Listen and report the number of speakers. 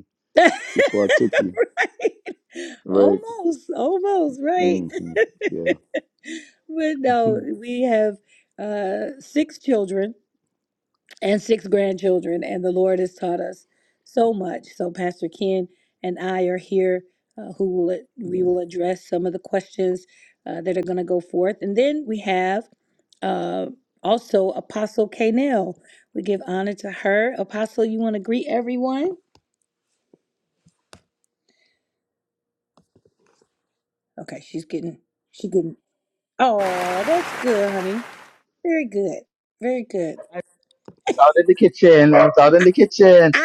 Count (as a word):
three